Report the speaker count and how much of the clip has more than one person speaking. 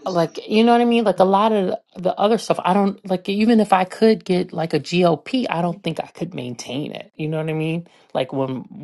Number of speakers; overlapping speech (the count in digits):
1, no overlap